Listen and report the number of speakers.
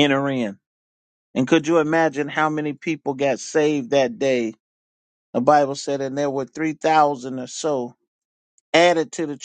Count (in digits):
1